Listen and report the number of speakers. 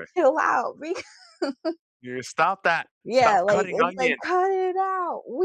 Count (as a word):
two